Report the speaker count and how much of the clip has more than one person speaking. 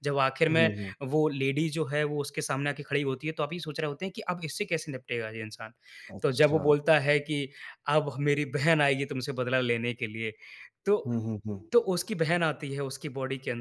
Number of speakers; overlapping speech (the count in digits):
2, about 6%